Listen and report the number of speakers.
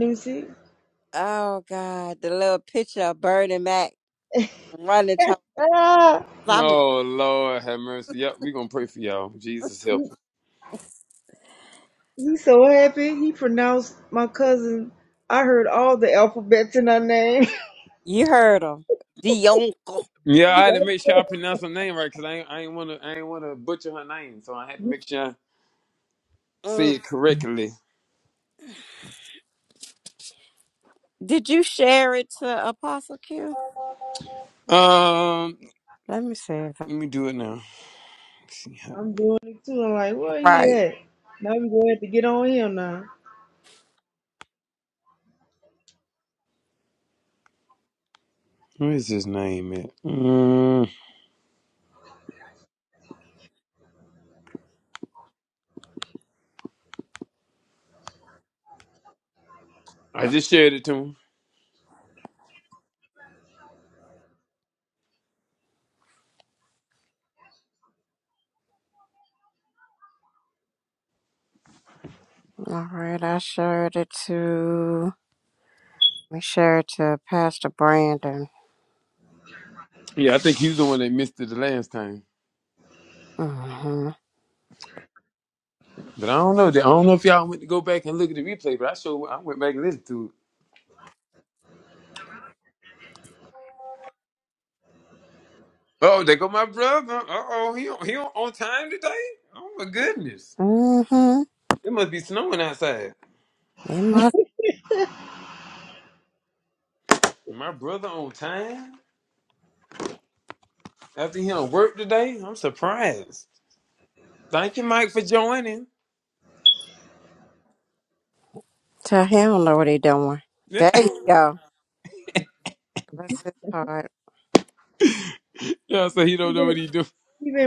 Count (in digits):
3